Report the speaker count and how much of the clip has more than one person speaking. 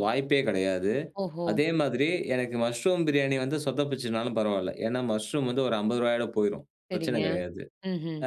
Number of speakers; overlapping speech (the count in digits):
2, about 6%